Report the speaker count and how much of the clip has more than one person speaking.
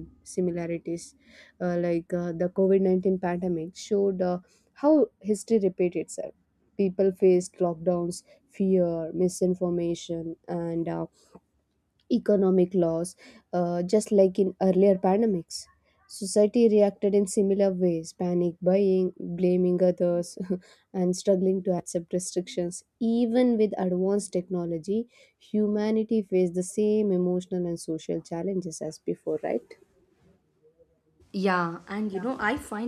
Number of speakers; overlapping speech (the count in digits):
2, no overlap